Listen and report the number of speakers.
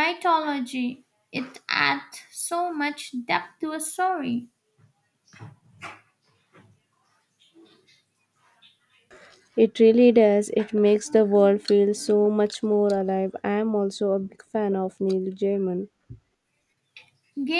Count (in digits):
2